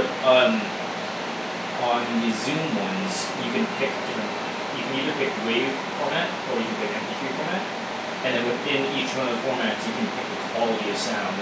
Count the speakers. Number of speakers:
one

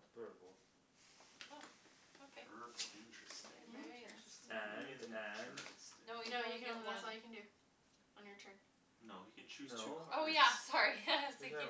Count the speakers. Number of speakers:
four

